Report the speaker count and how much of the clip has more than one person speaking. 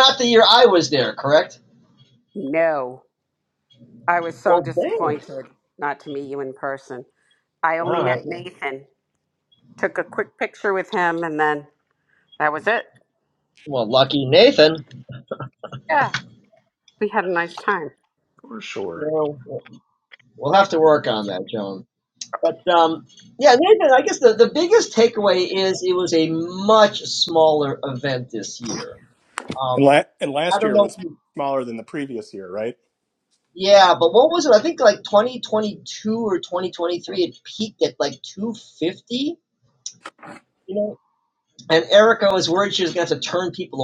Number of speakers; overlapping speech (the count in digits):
3, about 4%